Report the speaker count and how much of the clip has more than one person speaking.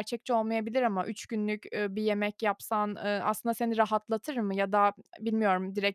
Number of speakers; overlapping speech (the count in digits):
1, no overlap